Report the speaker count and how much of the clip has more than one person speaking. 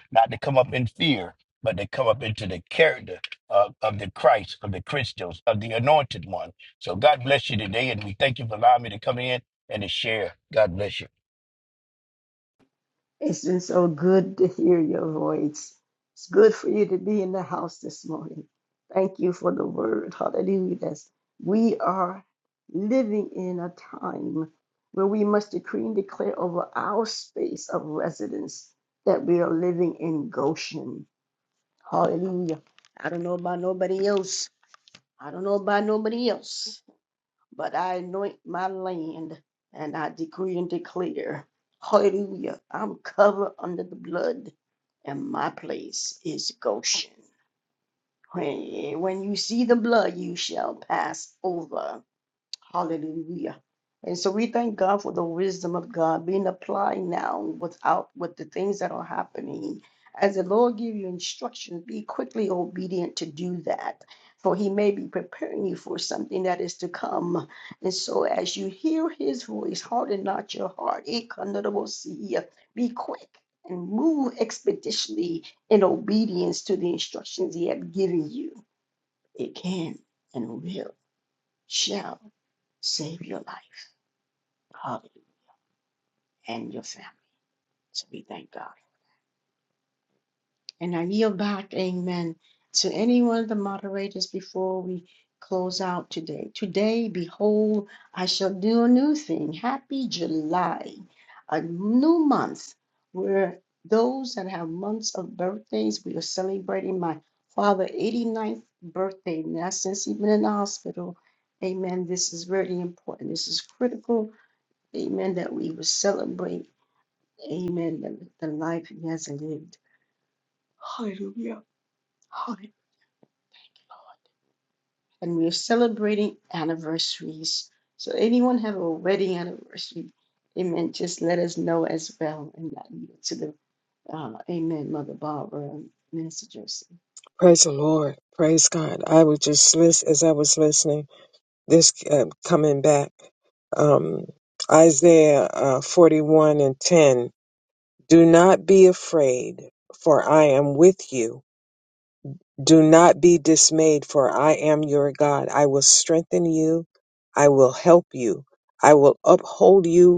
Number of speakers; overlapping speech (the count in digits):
3, no overlap